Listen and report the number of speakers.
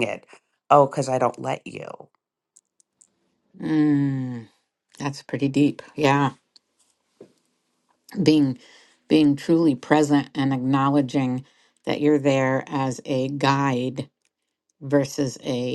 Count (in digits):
2